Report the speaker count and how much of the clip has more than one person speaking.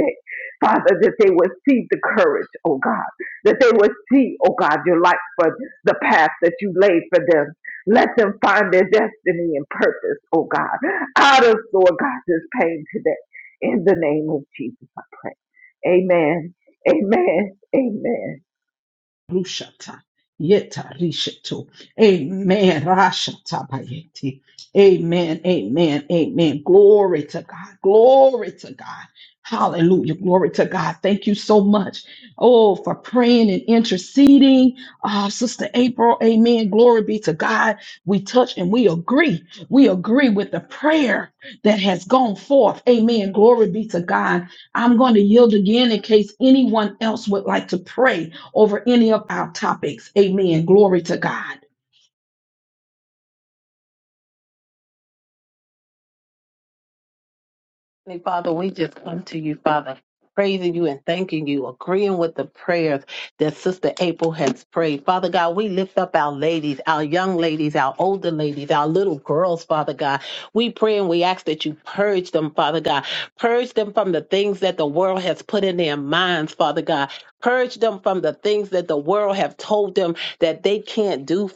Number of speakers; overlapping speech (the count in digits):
3, no overlap